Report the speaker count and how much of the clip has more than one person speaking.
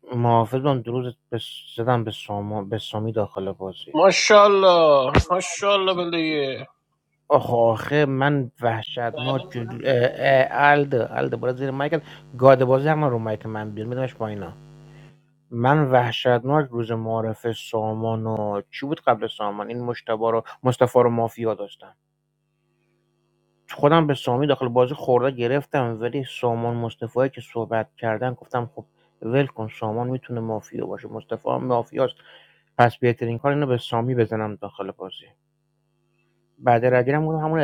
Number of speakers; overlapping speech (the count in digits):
2, no overlap